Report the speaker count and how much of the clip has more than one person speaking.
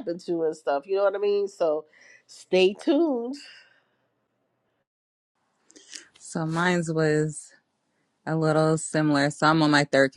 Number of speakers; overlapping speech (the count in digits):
2, no overlap